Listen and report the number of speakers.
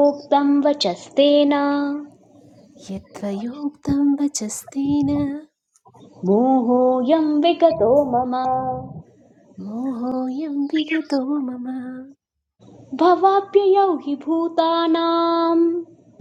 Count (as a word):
two